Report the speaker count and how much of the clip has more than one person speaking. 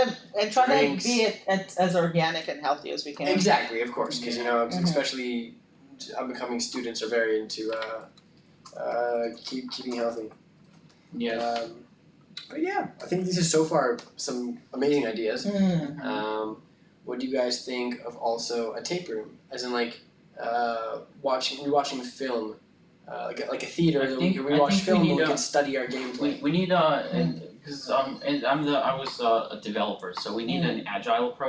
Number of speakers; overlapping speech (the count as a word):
three, about 12%